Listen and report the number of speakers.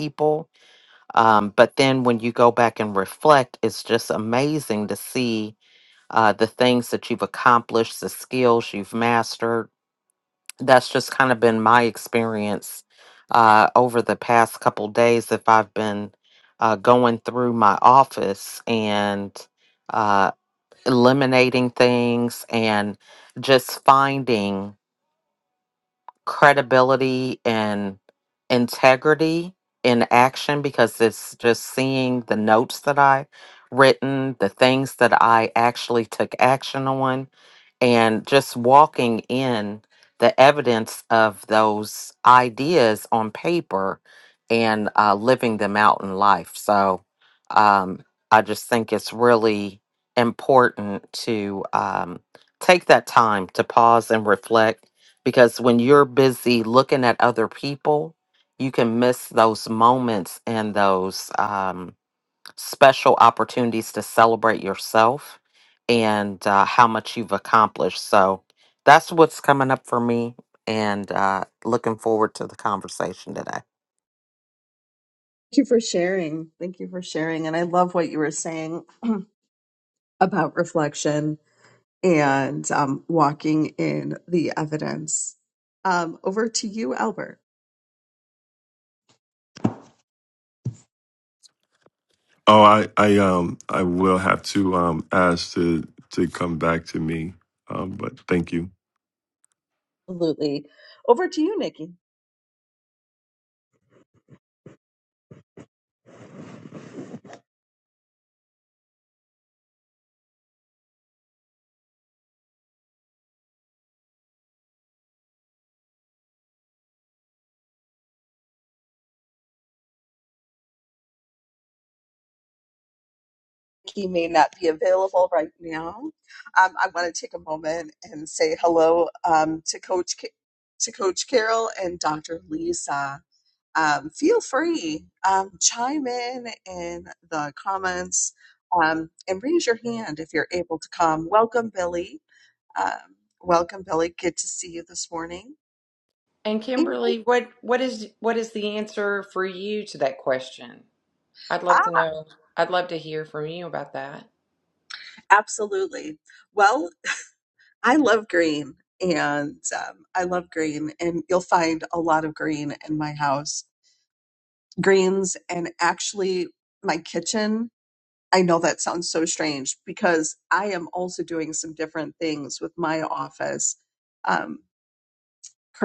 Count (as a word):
four